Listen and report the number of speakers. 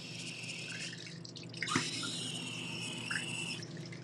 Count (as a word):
zero